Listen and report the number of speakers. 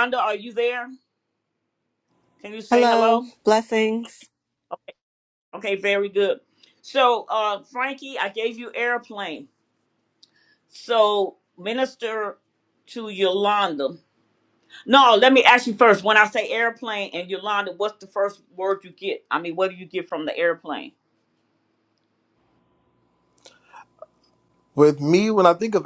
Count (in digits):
3